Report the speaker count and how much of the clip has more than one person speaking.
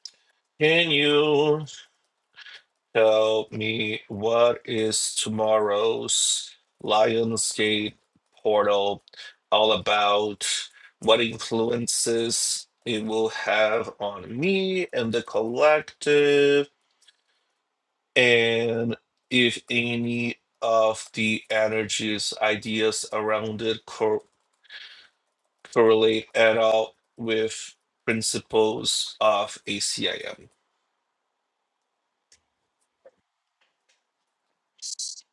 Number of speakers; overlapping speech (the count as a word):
one, no overlap